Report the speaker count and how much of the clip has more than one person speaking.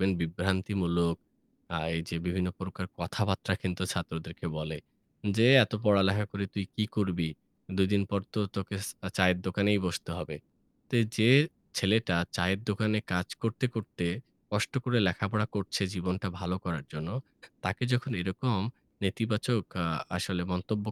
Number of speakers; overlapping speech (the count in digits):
1, no overlap